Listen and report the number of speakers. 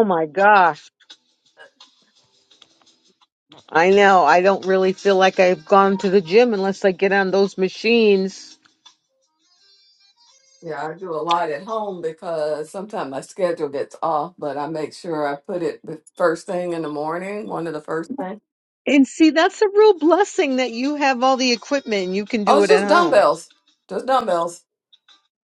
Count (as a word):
two